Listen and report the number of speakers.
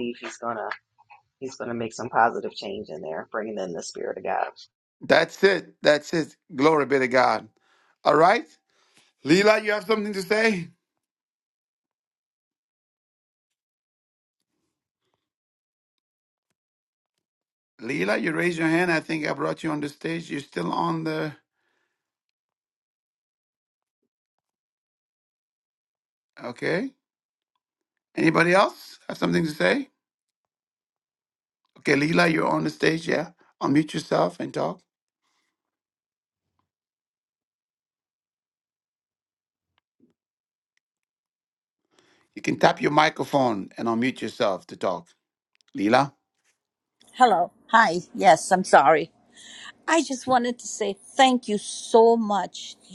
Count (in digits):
3